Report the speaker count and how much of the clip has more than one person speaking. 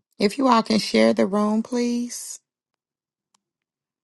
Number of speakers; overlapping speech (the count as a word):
one, no overlap